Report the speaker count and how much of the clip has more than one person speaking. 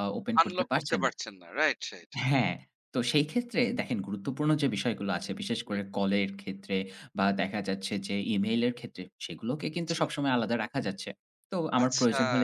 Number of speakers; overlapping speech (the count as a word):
two, about 12%